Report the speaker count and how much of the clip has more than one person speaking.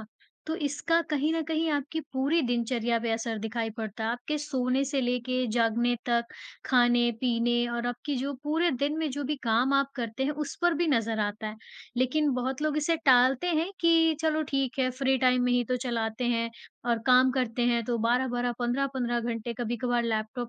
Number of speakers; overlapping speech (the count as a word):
one, no overlap